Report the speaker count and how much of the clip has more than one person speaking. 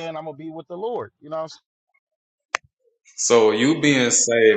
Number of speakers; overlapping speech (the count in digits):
2, no overlap